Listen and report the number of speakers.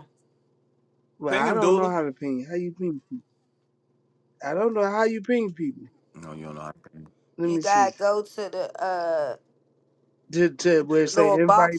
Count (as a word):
three